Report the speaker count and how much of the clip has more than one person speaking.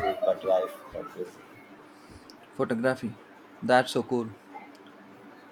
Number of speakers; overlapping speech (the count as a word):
two, no overlap